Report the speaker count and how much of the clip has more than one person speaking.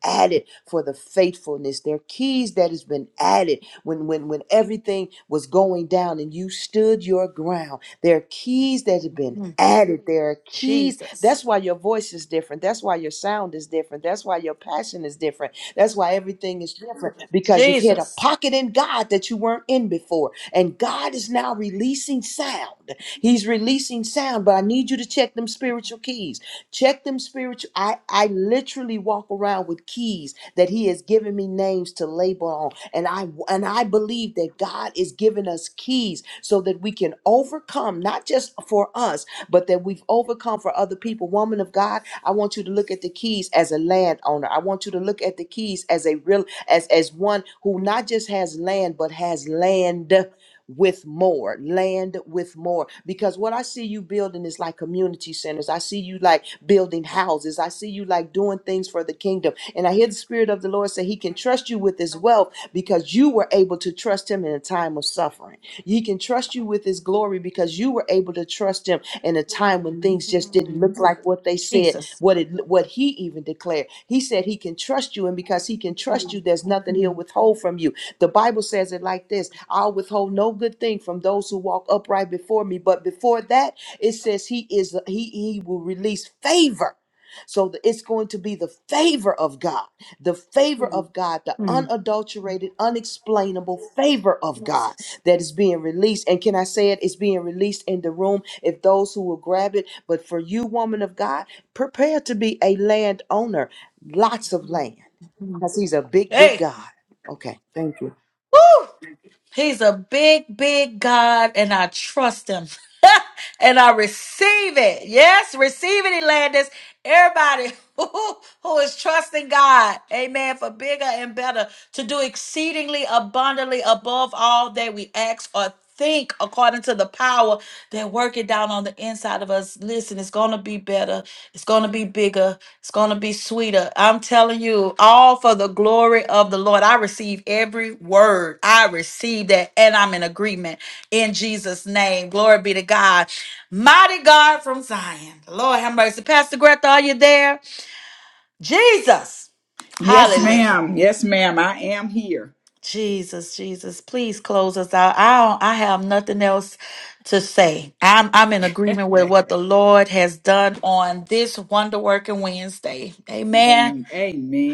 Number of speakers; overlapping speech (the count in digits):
3, about 2%